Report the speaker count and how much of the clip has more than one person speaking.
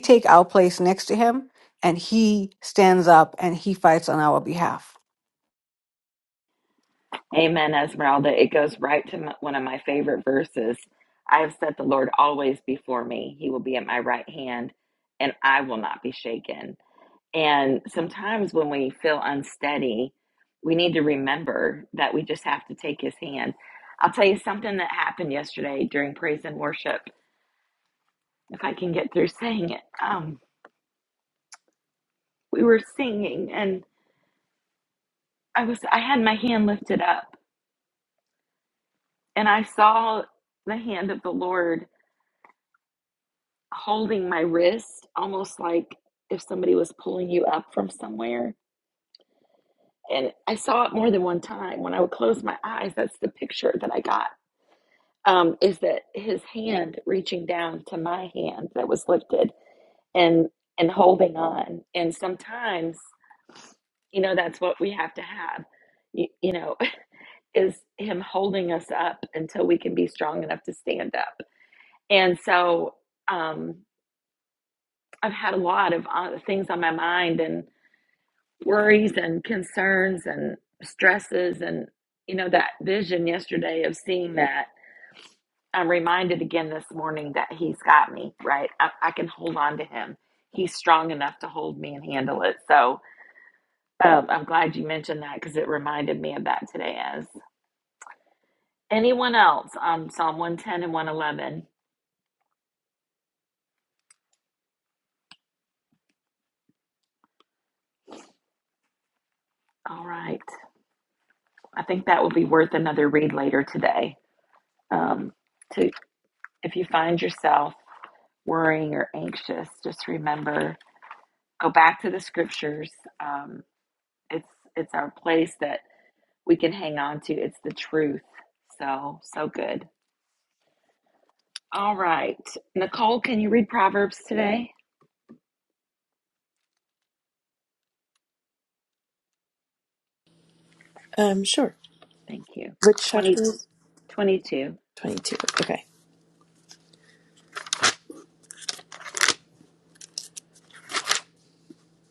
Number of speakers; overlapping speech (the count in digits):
3, under 1%